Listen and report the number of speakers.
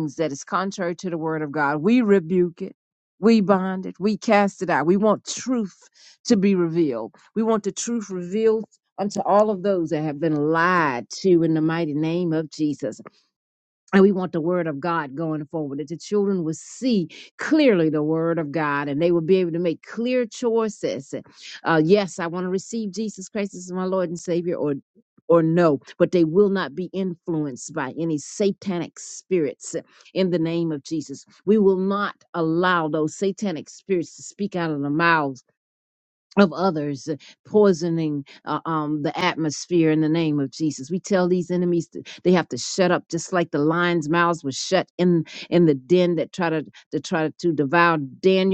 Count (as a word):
one